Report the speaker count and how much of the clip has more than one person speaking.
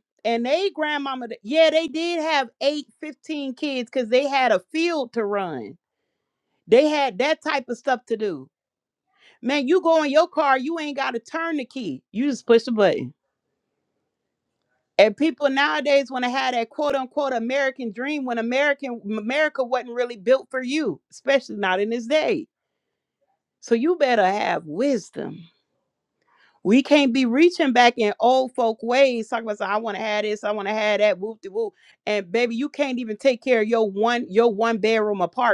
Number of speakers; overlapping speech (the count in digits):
1, no overlap